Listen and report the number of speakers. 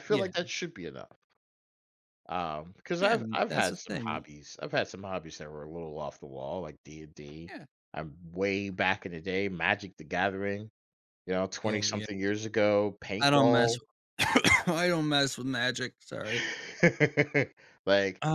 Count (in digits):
2